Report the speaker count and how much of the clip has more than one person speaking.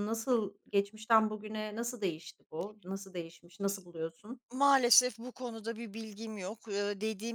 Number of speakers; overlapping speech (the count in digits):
2, no overlap